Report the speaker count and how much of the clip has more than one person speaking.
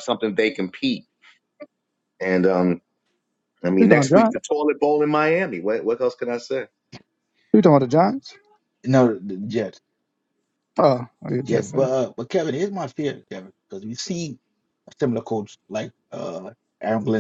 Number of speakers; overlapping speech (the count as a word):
three, about 5%